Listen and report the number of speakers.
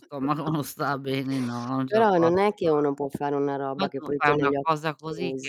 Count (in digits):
2